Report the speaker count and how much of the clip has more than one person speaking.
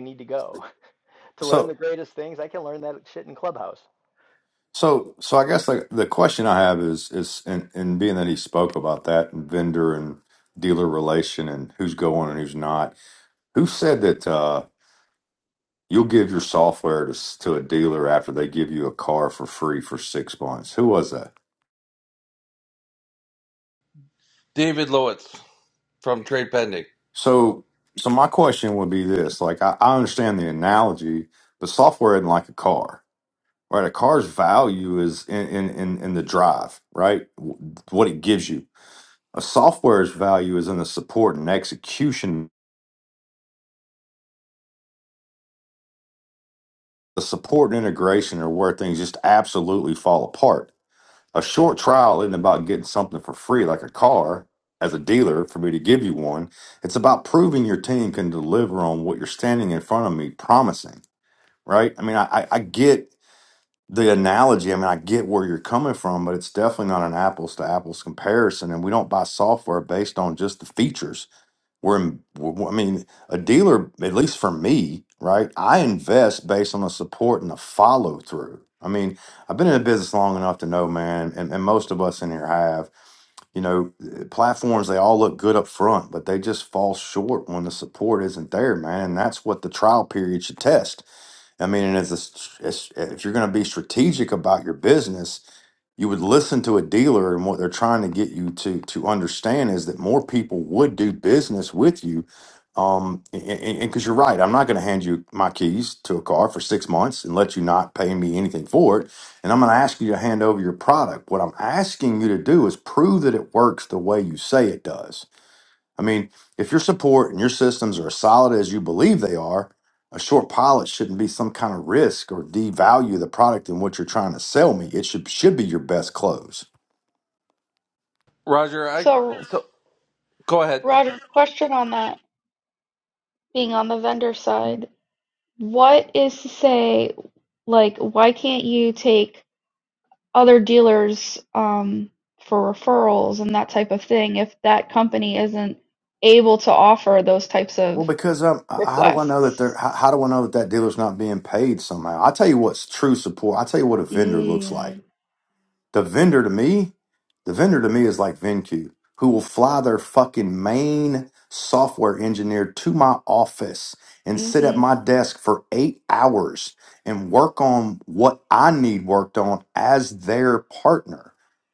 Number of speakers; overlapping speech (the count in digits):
4, about 1%